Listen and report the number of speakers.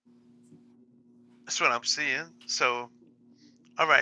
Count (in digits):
1